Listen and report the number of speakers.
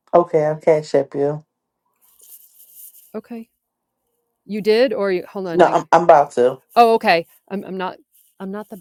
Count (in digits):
2